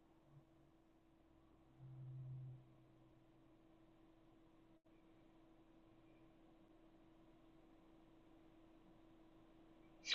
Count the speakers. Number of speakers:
0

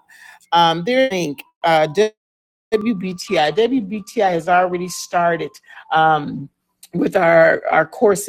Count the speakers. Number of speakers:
1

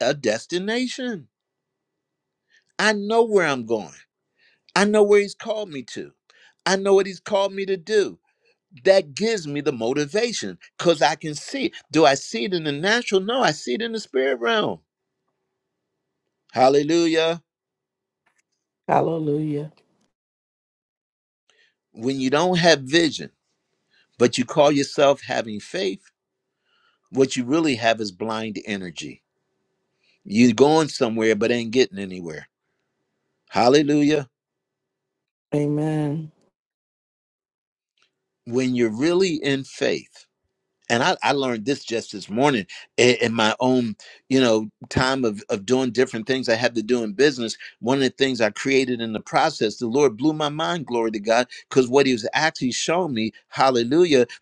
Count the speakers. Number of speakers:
2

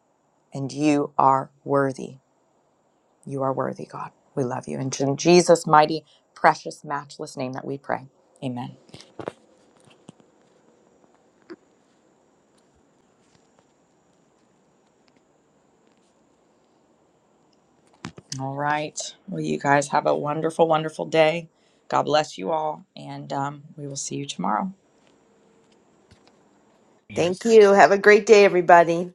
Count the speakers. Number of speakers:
2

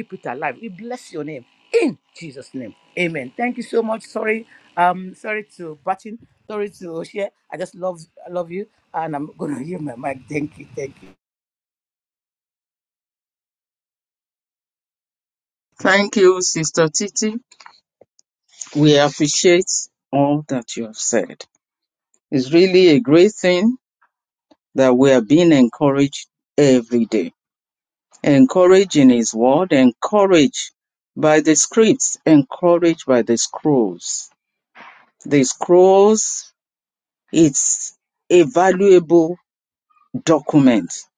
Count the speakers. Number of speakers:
2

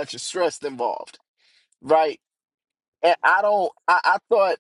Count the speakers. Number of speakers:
1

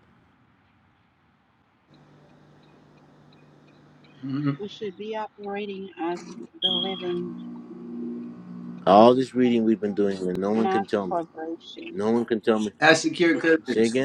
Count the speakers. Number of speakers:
3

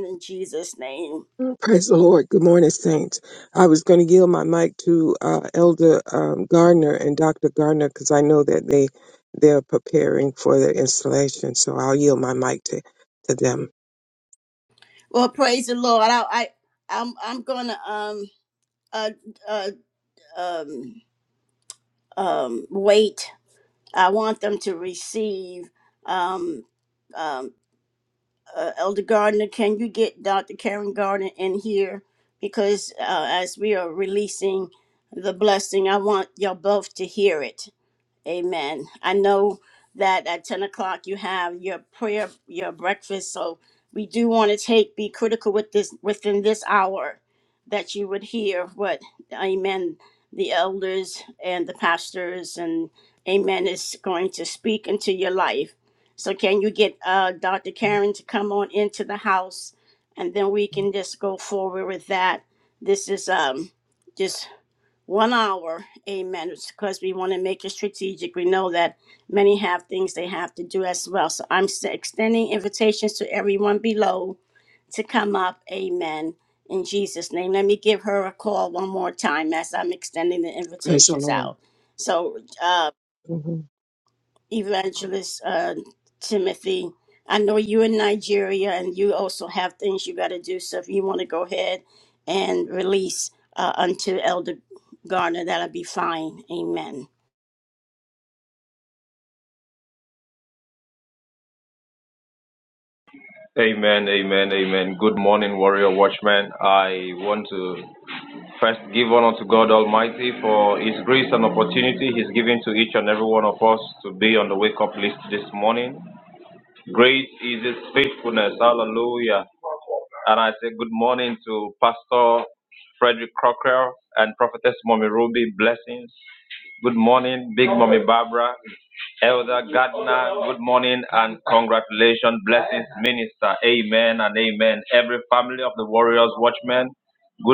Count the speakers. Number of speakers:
3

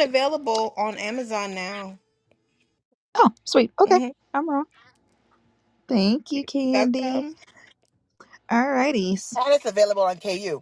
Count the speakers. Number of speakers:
3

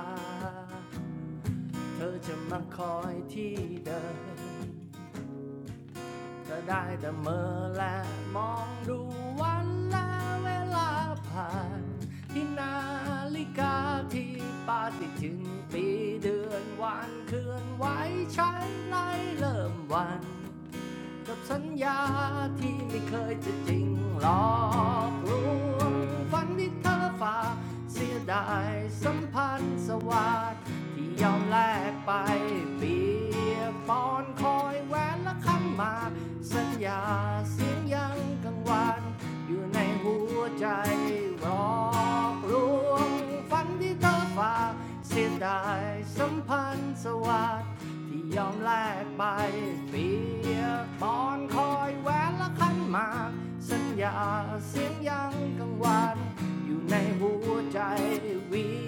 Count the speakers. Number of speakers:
1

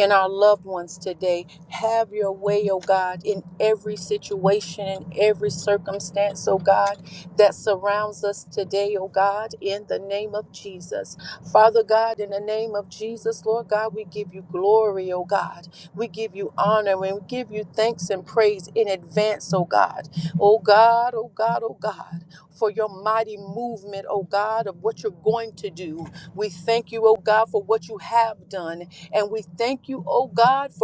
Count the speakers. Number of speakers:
1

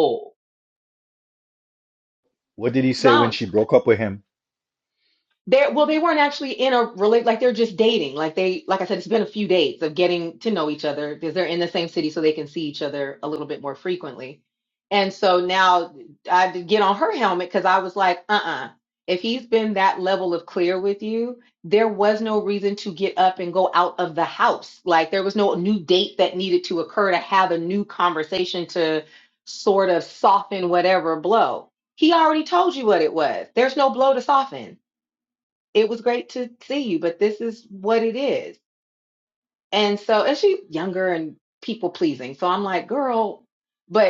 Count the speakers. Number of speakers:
2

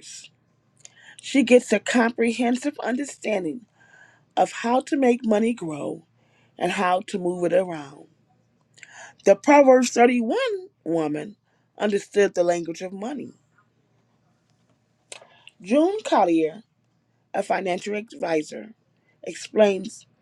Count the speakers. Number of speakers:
1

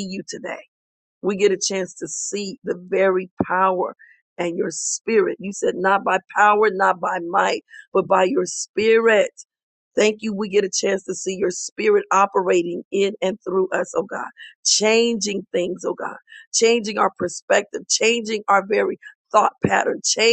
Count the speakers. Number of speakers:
1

